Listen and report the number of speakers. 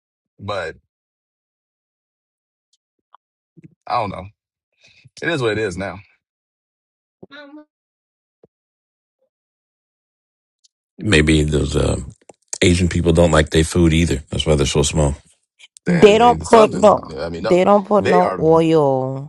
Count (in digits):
3